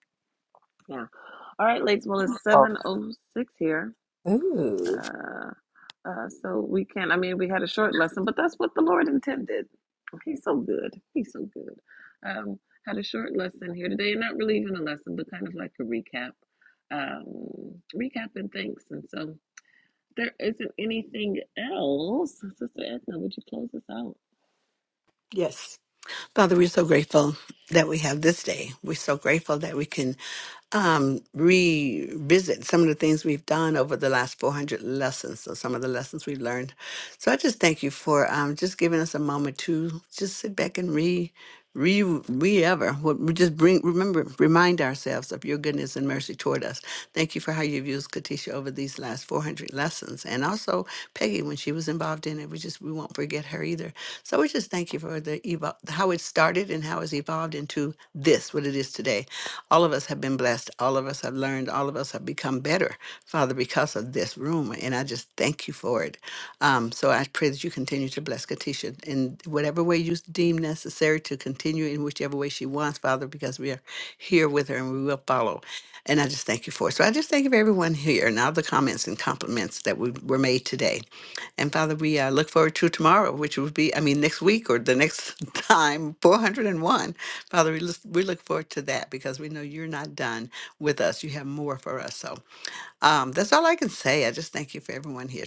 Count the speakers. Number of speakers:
3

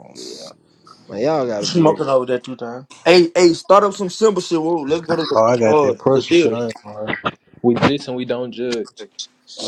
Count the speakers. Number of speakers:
4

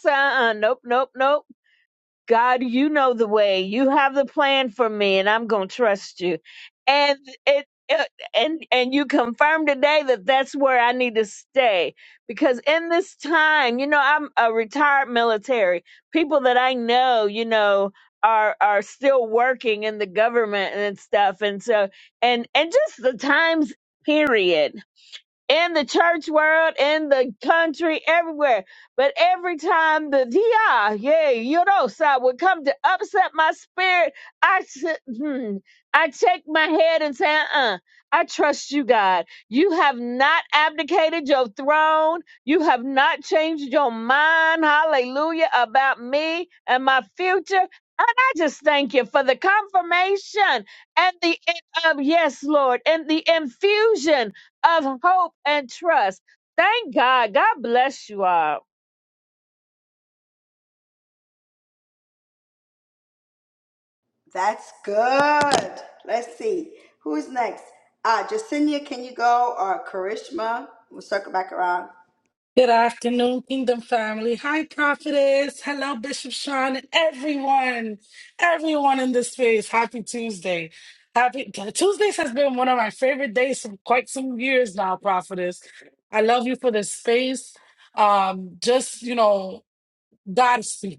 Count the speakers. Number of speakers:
3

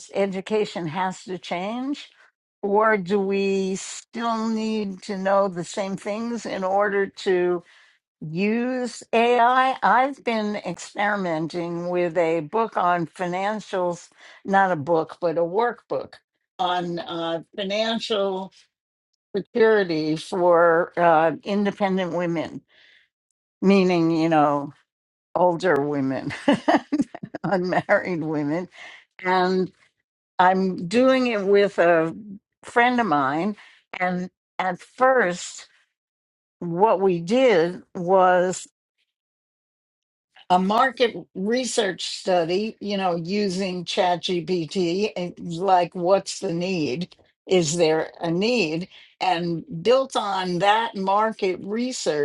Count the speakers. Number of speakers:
1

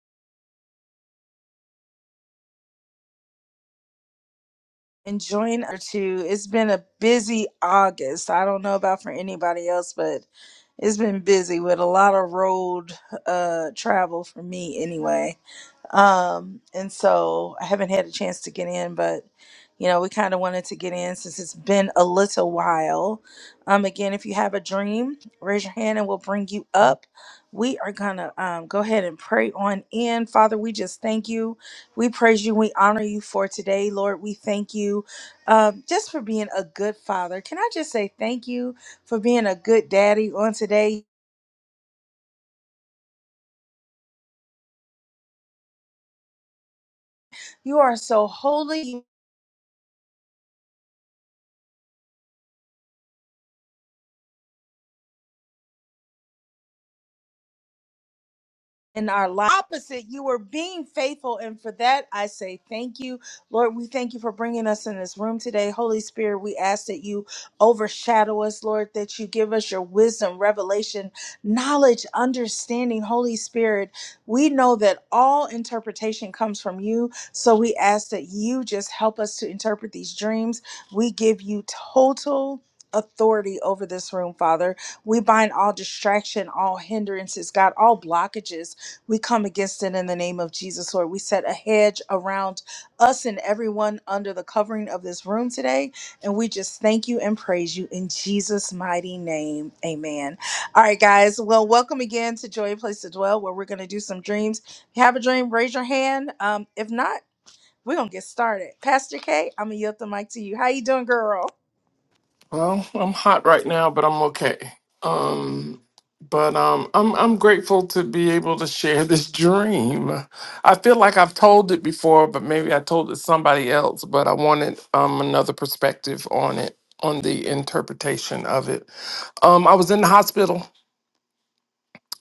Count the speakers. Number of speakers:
2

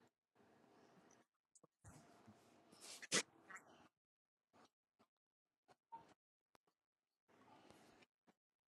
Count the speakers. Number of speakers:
0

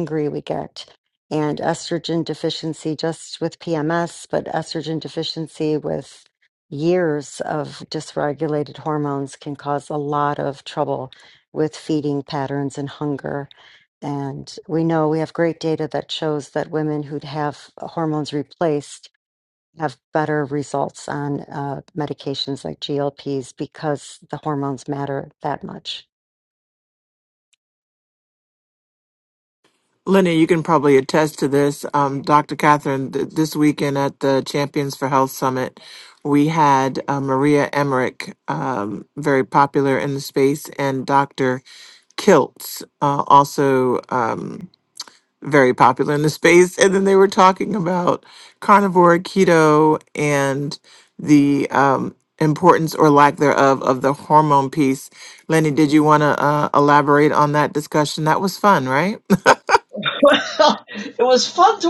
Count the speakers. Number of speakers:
3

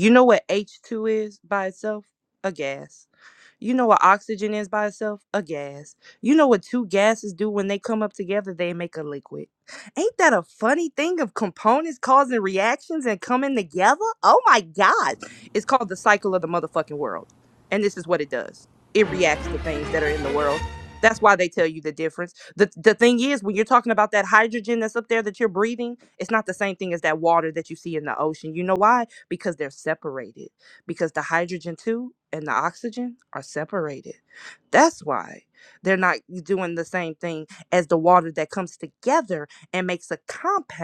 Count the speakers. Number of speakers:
1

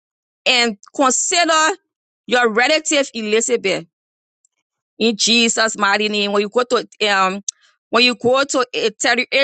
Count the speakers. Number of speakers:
1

